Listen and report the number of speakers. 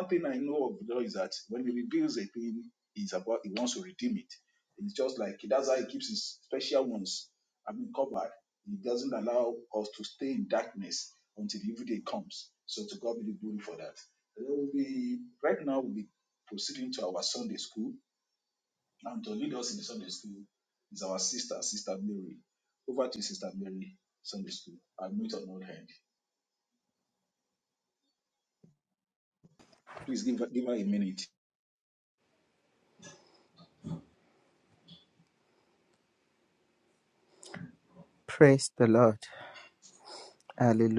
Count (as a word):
two